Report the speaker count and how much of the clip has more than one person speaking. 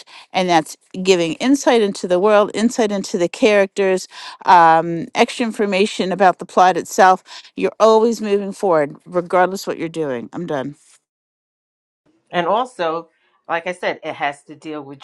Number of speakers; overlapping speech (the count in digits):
2, no overlap